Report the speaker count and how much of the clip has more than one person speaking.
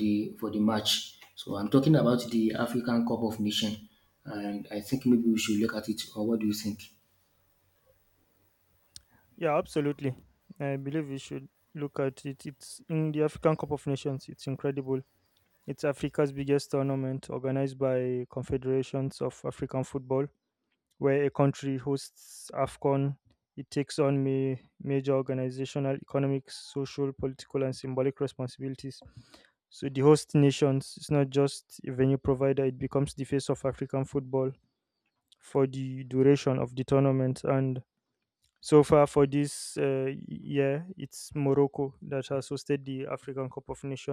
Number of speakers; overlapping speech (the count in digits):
2, no overlap